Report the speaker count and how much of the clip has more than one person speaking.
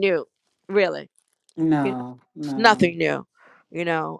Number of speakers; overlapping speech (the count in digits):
2, about 8%